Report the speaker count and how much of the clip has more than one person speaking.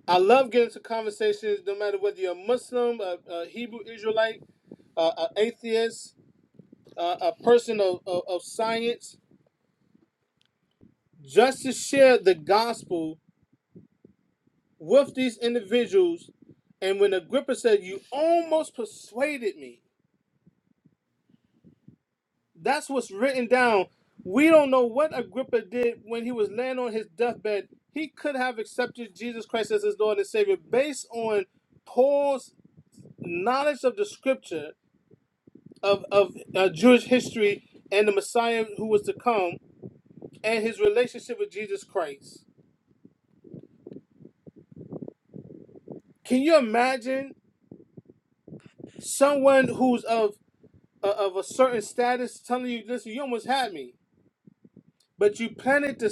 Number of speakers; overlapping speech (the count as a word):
one, no overlap